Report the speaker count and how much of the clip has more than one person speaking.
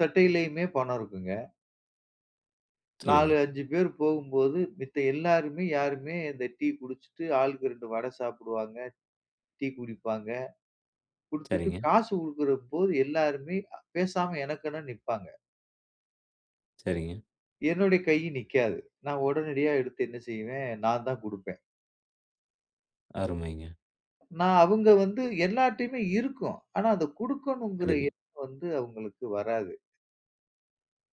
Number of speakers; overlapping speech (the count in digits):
2, about 3%